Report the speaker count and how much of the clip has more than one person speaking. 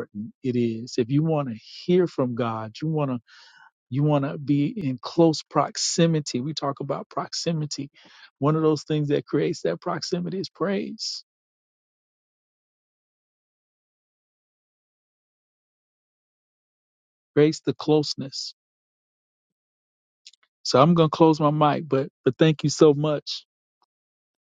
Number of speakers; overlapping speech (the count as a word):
one, no overlap